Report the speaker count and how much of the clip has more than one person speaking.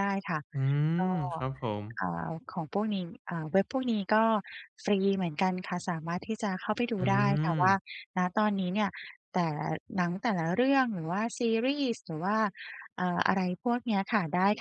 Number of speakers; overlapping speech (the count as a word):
two, about 6%